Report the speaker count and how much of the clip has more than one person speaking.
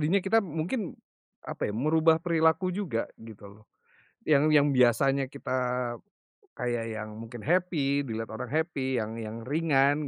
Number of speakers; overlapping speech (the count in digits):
1, no overlap